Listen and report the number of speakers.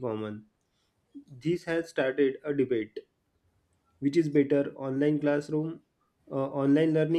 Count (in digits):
1